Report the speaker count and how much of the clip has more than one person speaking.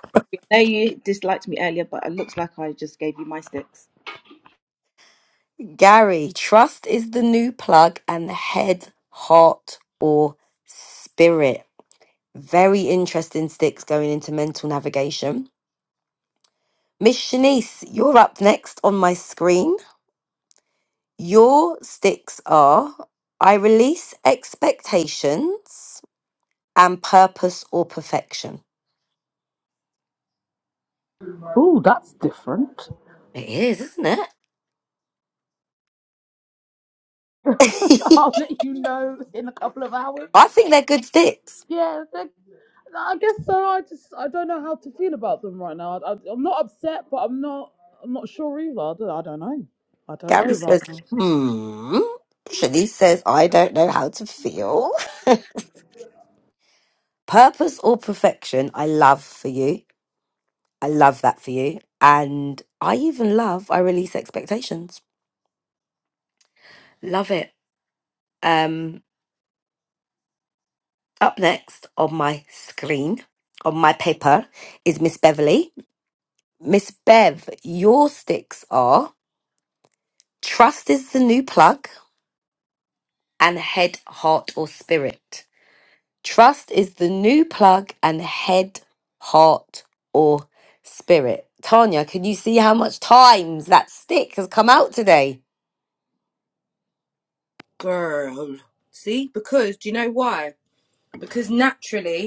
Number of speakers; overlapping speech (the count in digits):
4, about 1%